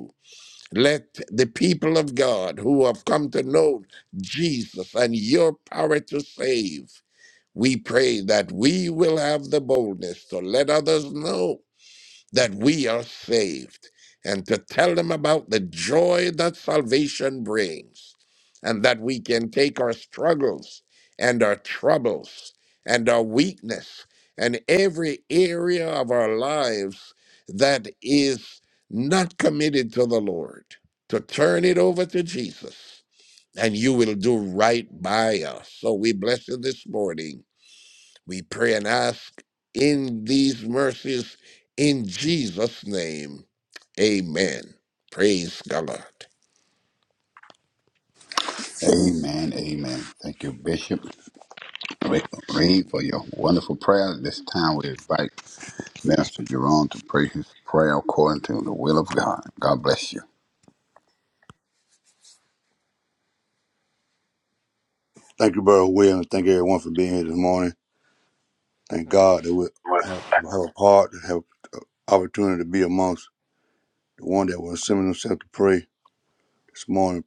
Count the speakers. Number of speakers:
3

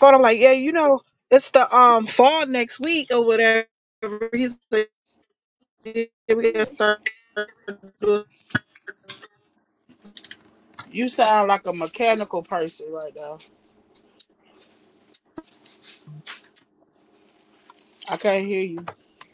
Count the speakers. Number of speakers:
2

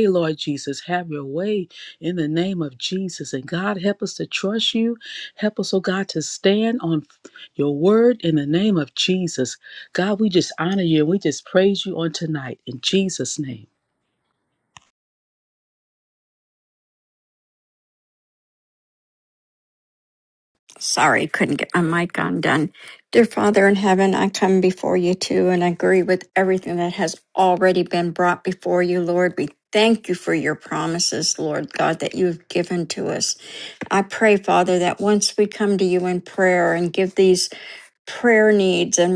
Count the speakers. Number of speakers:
2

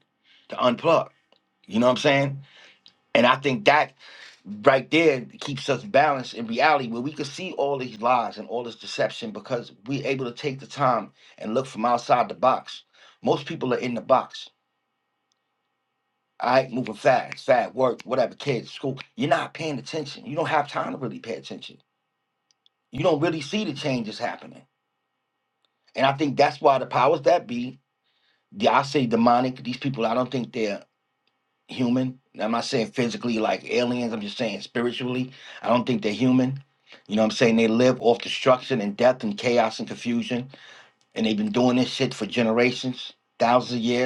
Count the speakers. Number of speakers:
1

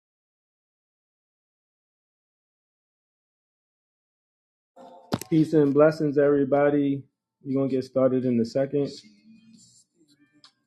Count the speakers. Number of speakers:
1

